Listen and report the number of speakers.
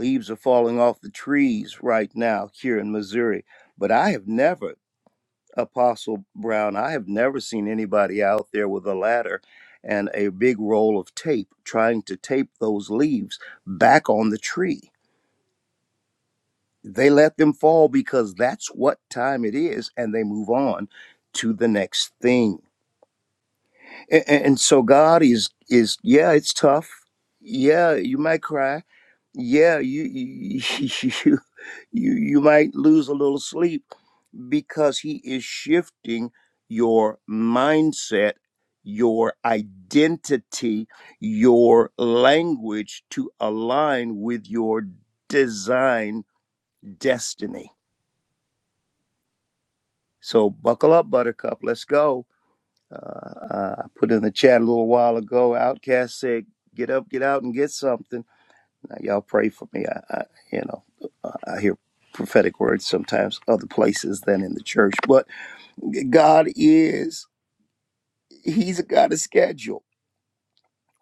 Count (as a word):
one